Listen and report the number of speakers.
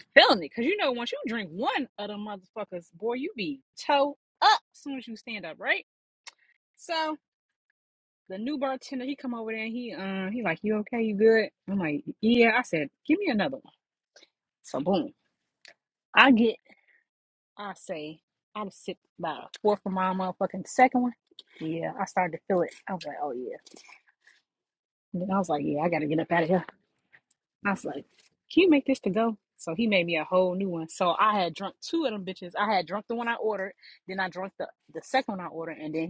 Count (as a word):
one